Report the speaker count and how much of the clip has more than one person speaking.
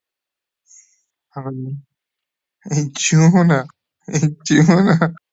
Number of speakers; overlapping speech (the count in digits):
1, no overlap